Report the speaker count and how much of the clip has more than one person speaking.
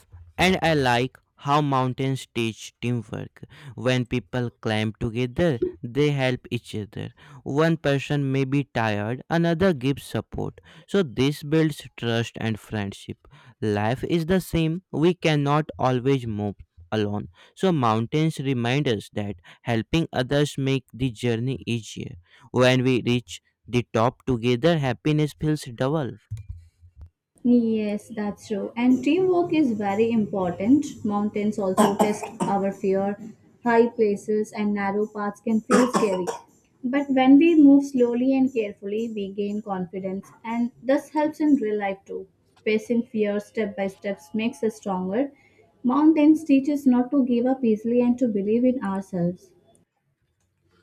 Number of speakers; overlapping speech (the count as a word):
two, no overlap